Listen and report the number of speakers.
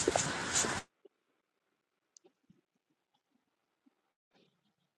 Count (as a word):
zero